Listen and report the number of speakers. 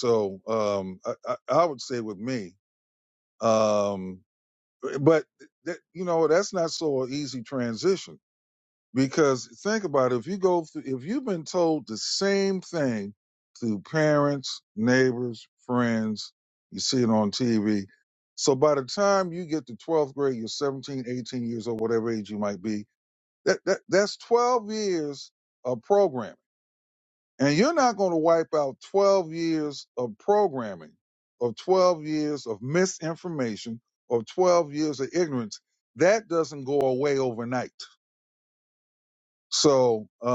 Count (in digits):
1